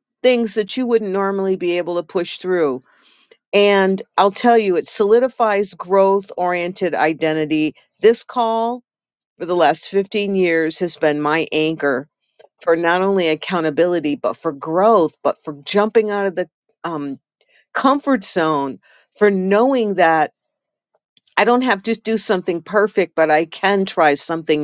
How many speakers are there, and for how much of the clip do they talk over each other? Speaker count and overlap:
1, no overlap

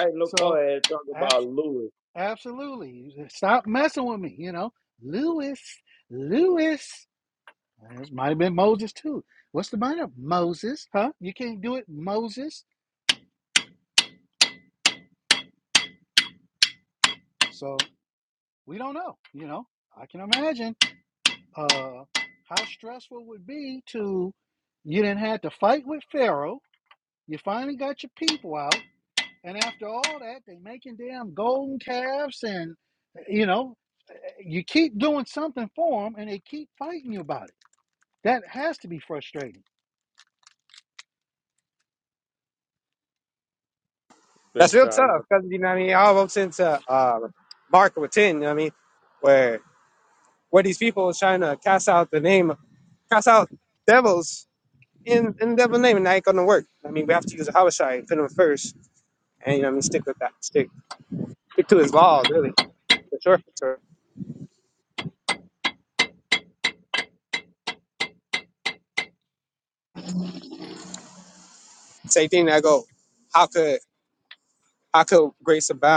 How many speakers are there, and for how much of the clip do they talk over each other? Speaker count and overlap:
3, about 1%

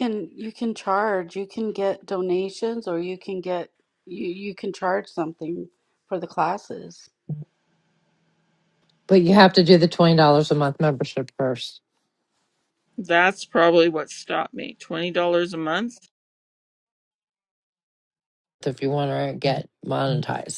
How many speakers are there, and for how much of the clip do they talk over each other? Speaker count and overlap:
3, no overlap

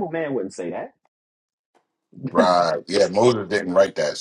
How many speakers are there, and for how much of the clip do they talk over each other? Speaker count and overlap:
2, about 5%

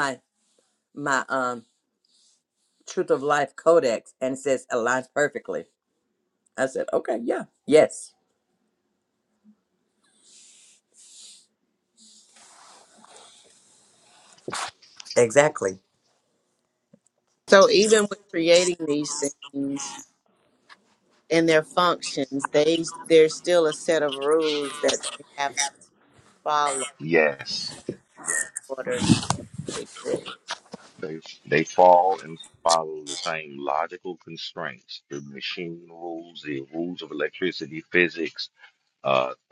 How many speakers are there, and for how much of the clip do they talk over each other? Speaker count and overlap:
3, no overlap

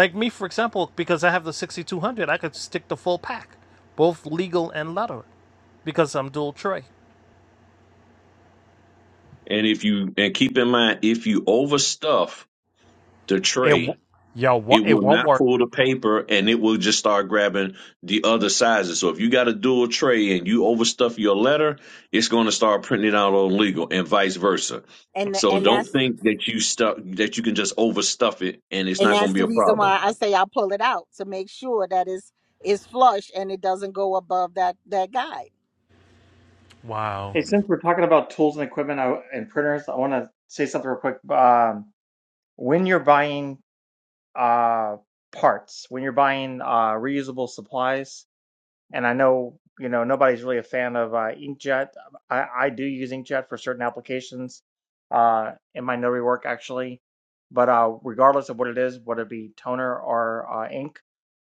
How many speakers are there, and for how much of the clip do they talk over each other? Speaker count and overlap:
4, about 4%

